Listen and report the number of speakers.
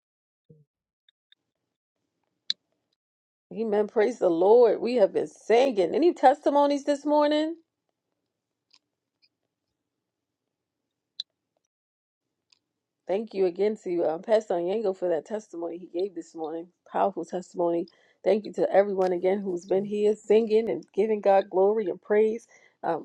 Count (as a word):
one